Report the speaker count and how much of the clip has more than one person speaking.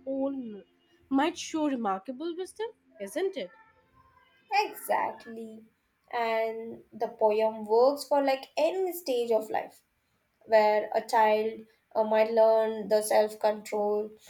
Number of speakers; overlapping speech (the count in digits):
2, no overlap